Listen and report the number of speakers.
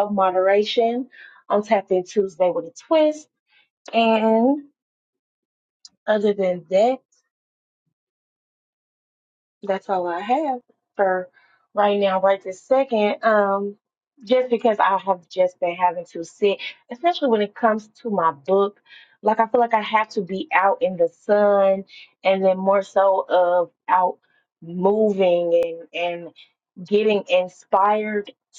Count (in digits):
1